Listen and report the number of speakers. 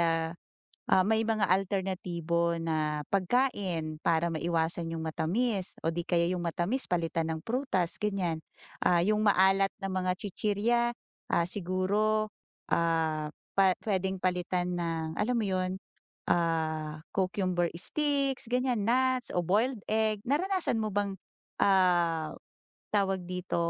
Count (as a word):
one